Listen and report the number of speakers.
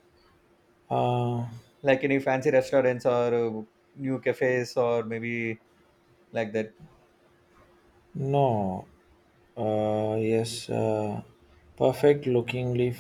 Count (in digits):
2